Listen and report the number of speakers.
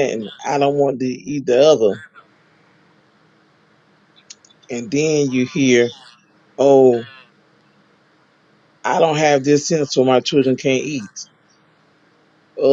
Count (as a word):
one